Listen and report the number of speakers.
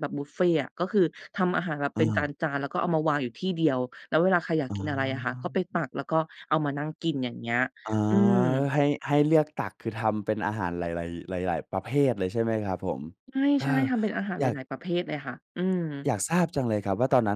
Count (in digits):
2